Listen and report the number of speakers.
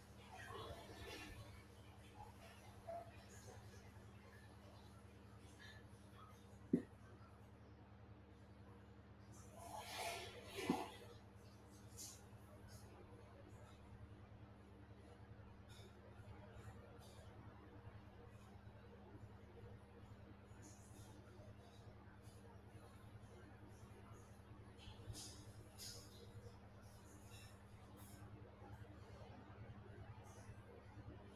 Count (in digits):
0